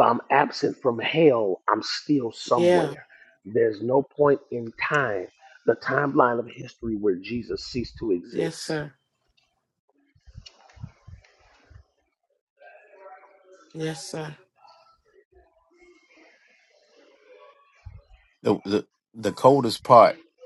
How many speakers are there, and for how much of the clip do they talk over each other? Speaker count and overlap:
3, about 3%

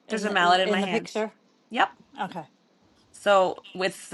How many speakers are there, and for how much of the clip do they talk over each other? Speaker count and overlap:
2, about 23%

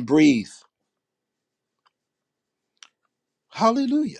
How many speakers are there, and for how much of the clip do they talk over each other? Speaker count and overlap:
1, no overlap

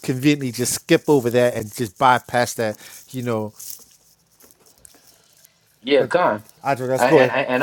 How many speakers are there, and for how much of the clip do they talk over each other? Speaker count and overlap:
2, about 6%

